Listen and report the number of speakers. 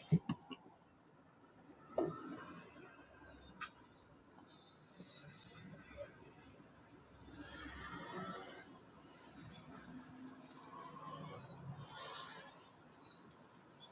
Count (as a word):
zero